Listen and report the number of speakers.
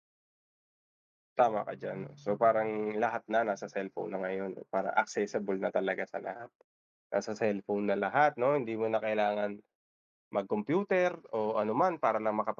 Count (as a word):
one